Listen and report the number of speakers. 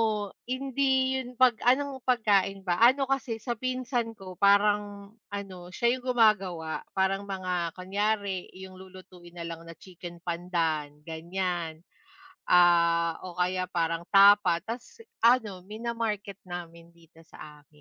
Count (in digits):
1